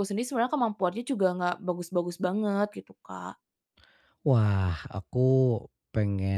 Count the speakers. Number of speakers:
2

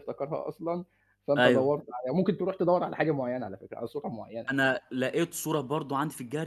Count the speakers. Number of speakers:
2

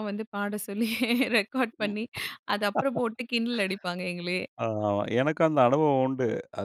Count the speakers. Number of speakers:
2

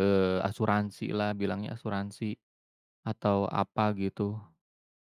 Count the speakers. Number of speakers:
1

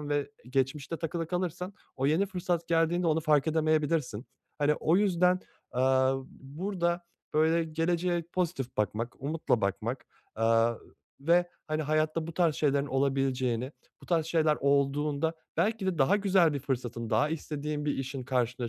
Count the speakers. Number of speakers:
1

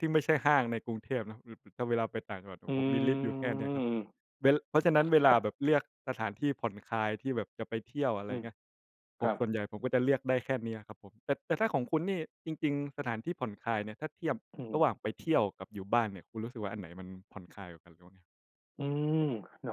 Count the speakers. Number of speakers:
2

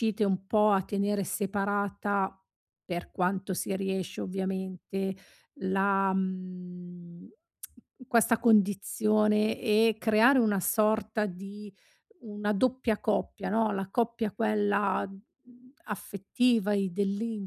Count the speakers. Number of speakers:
1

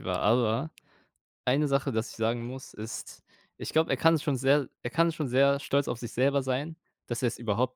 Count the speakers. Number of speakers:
1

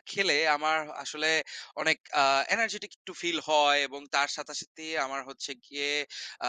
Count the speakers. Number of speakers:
1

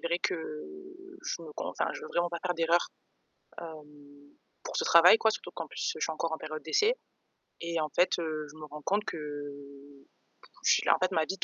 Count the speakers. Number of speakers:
1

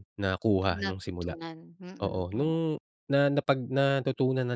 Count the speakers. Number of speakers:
2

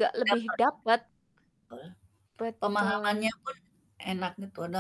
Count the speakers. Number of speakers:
2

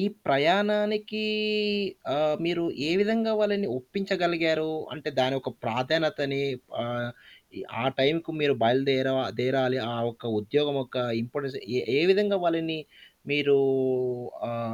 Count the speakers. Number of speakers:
1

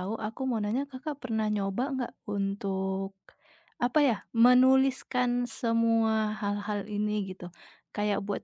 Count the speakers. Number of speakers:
1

